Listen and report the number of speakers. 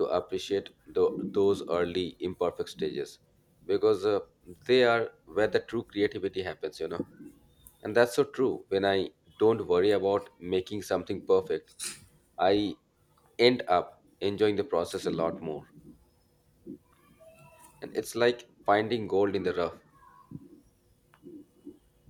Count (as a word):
one